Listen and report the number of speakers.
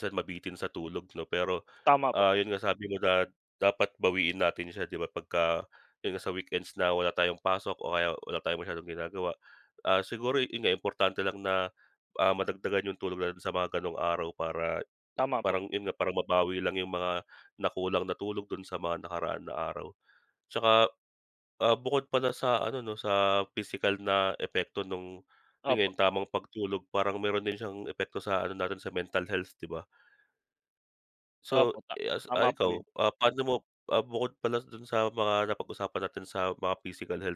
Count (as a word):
two